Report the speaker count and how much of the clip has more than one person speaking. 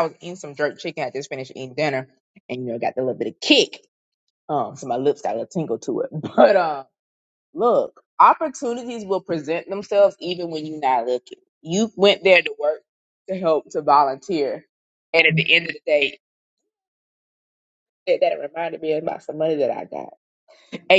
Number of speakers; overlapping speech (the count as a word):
one, no overlap